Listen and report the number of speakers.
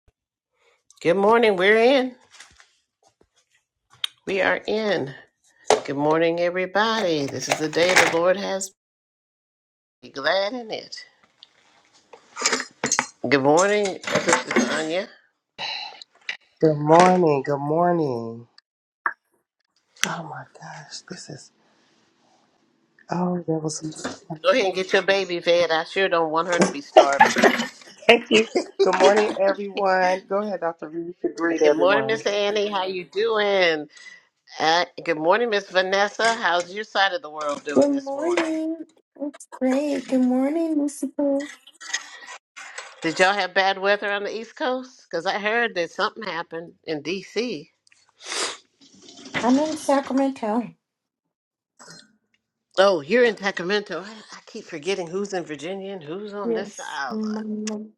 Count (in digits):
3